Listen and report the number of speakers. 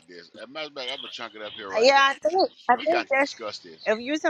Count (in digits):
2